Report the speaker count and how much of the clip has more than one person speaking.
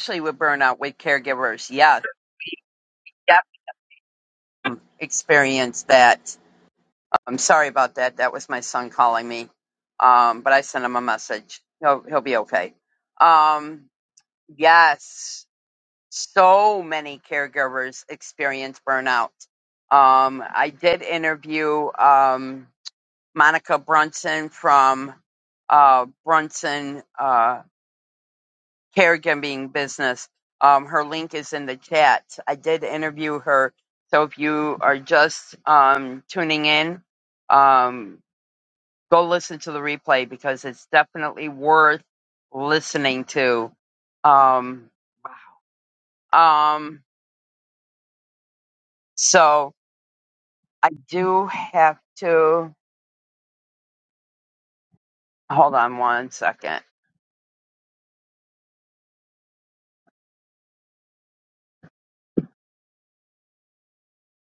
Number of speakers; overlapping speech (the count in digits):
1, no overlap